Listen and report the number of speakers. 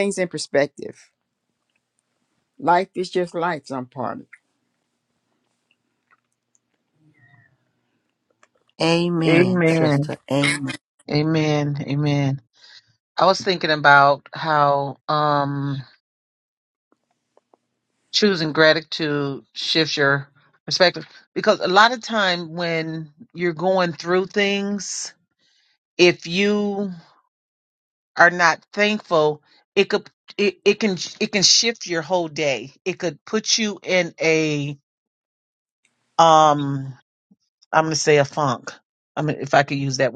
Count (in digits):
3